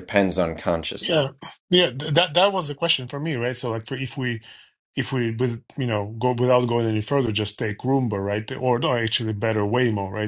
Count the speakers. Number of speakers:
2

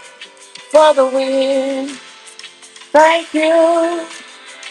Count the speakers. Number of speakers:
1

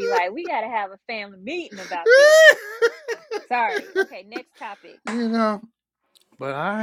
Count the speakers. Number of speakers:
2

